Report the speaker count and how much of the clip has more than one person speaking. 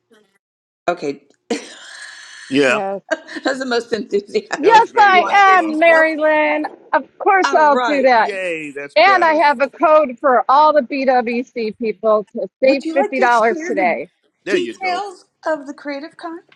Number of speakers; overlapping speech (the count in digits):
3, about 26%